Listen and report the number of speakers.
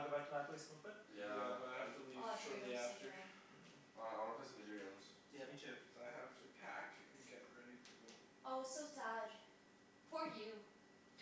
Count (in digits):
4